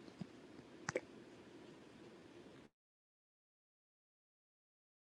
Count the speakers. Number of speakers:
zero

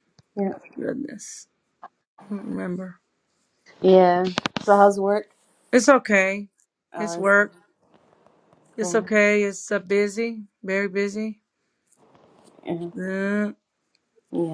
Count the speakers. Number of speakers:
two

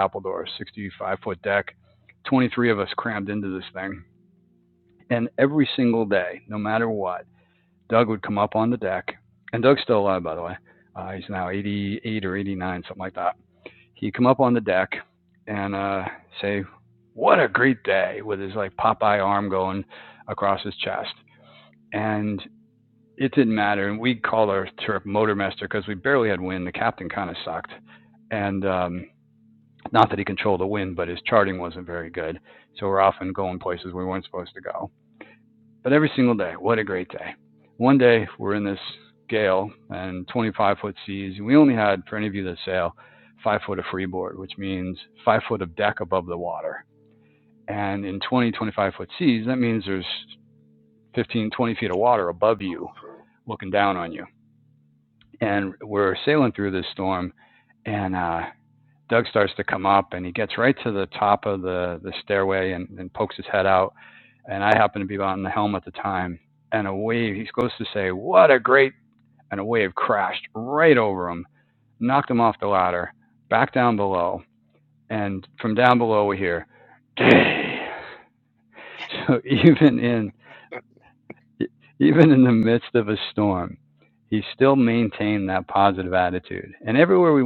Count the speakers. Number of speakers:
one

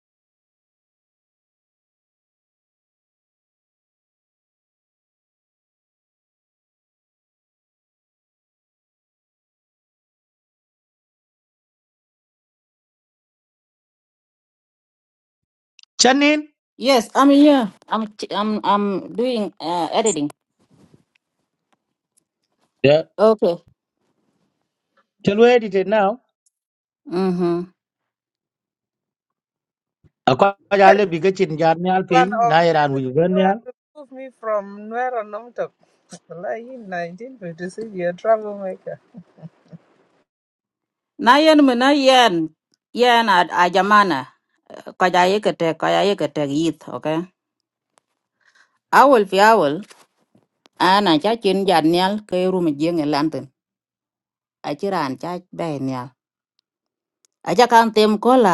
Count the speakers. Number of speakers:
three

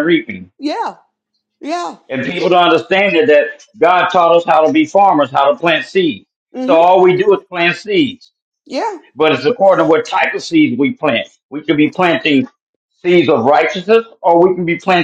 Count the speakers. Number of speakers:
two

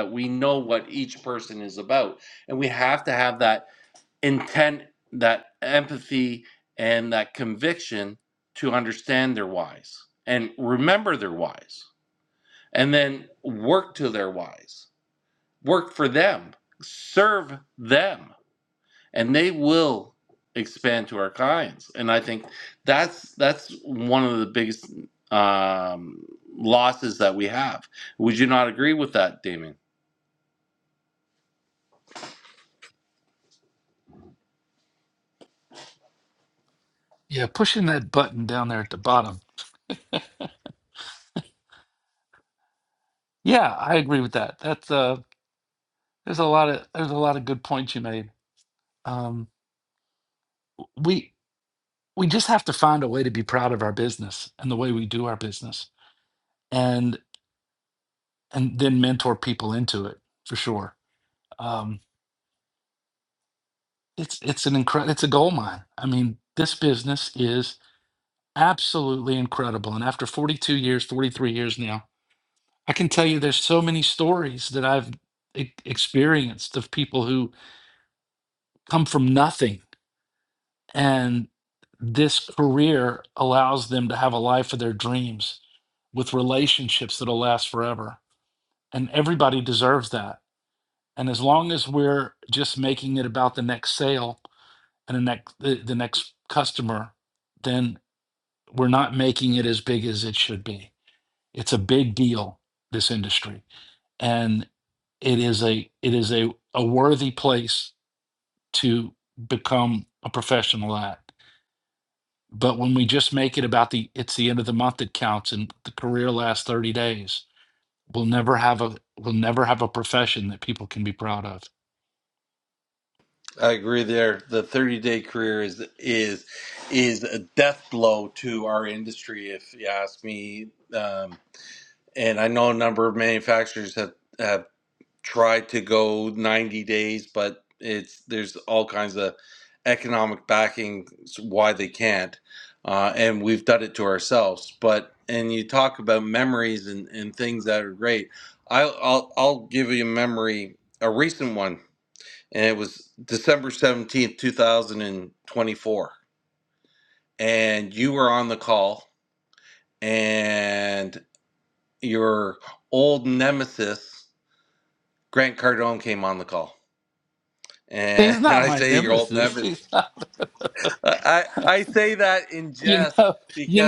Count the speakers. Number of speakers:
two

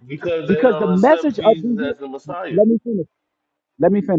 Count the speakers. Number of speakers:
two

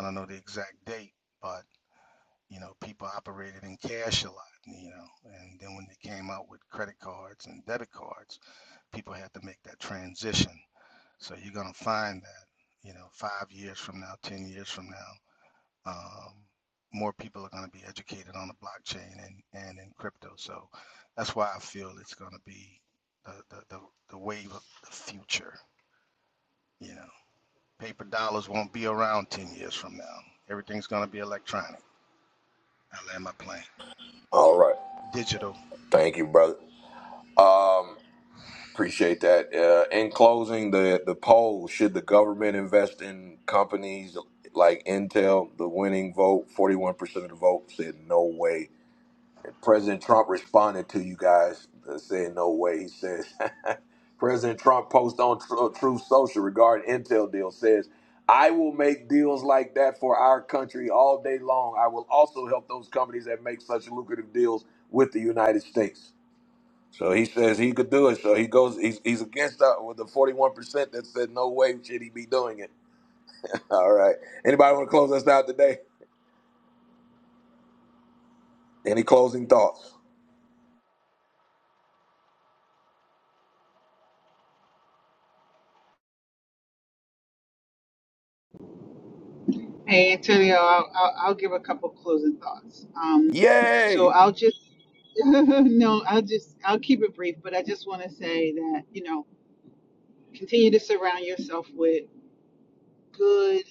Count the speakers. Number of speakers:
three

